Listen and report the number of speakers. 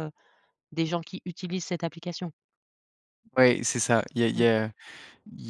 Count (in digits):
2